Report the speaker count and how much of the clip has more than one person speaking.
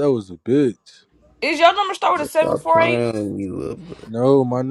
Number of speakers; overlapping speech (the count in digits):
3, about 18%